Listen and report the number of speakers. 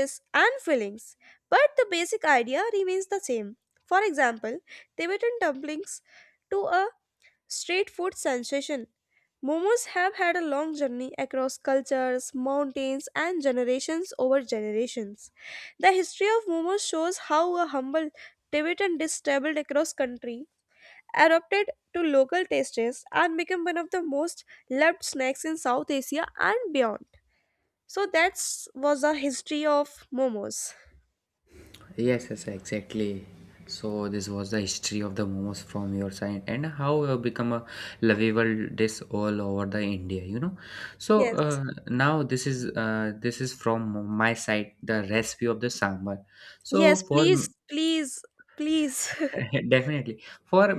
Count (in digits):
2